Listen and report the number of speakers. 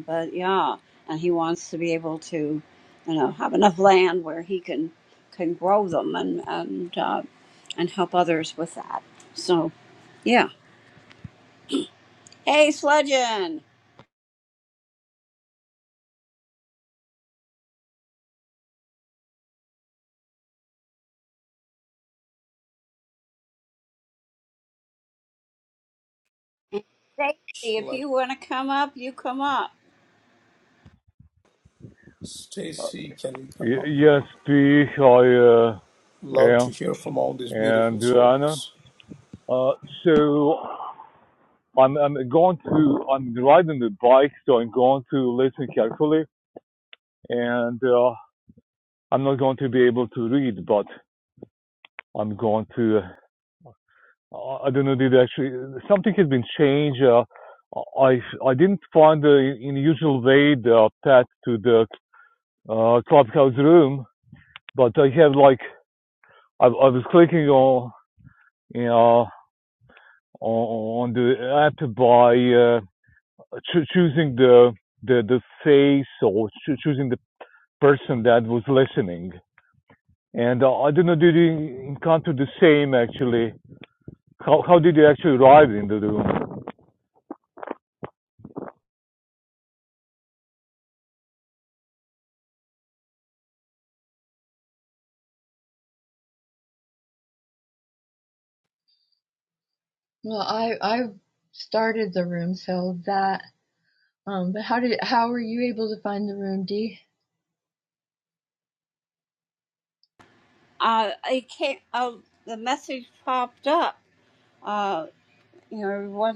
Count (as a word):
four